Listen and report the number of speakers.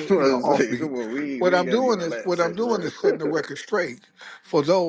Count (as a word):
two